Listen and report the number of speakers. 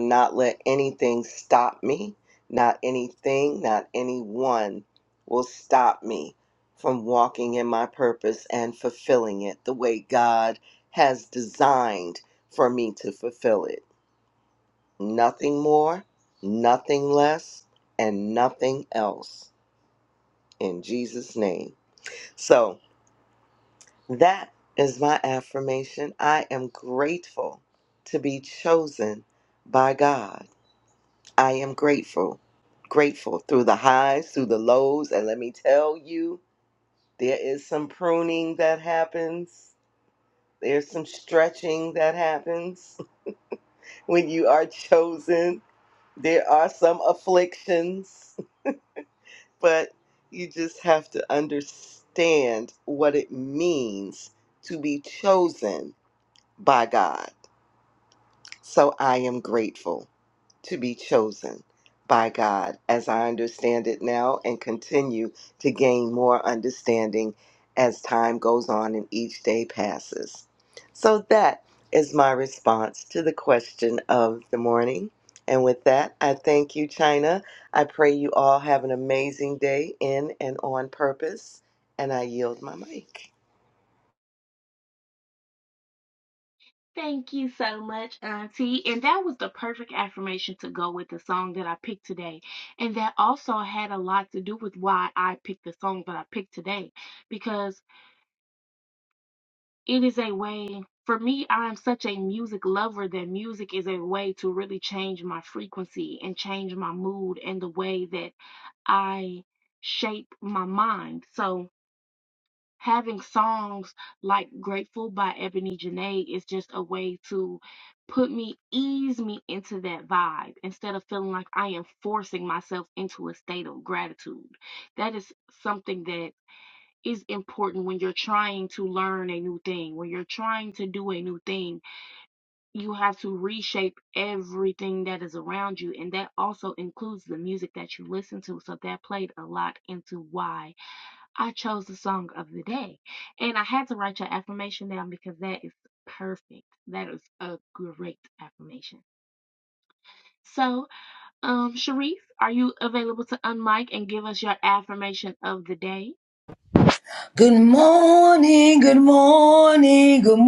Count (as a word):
three